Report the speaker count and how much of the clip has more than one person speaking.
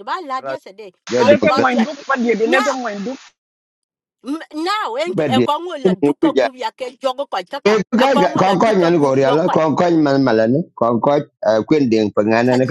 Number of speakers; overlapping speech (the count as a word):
three, about 29%